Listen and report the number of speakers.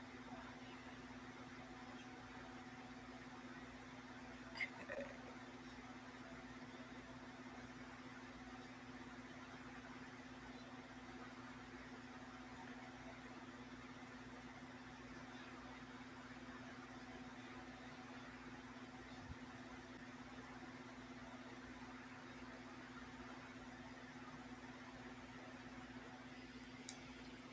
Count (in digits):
0